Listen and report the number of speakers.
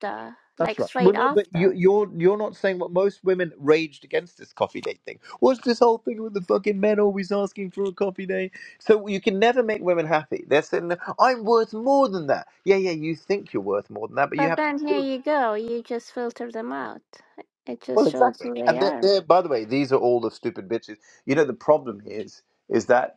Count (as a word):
two